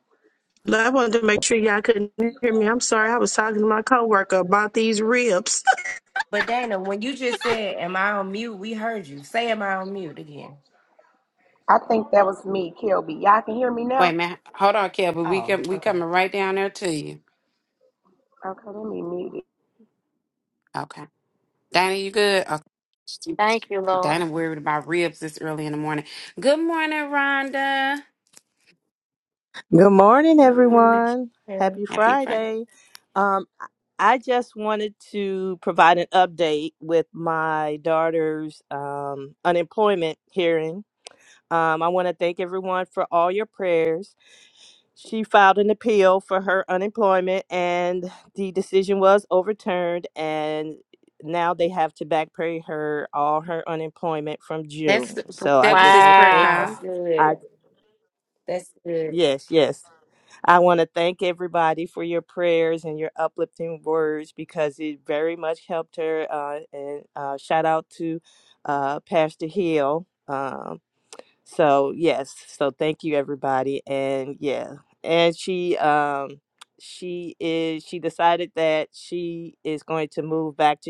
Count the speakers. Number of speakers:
six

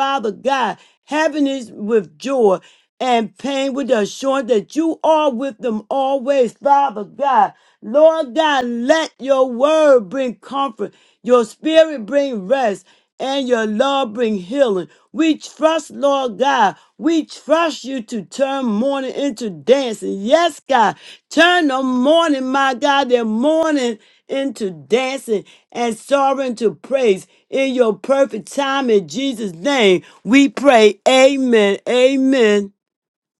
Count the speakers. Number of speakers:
one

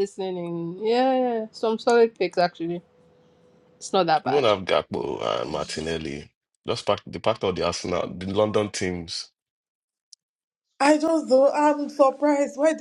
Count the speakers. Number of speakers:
three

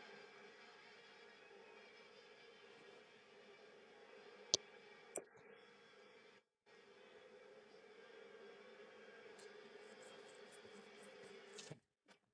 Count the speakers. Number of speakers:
zero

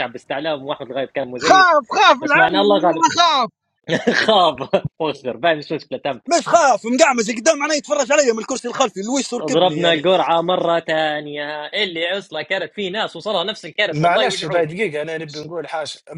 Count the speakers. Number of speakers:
four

